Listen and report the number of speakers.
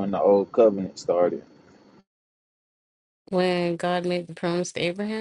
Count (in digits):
2